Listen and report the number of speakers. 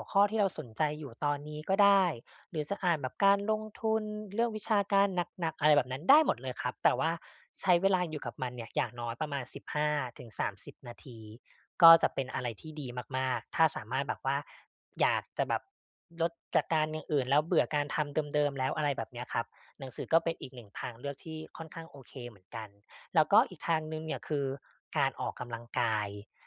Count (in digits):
1